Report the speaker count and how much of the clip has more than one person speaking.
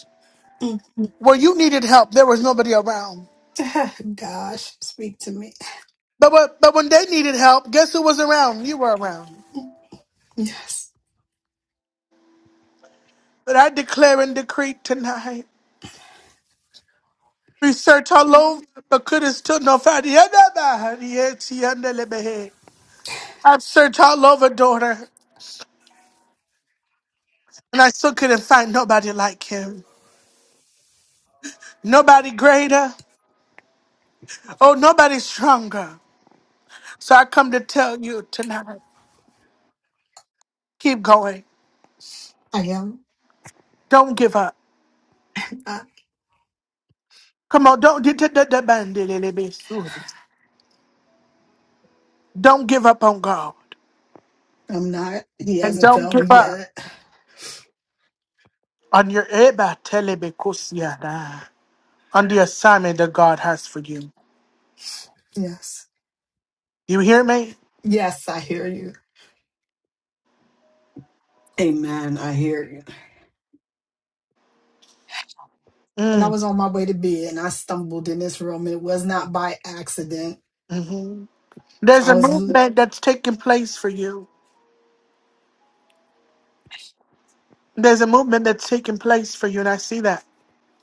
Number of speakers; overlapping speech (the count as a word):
two, about 2%